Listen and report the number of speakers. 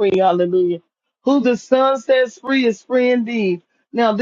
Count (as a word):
one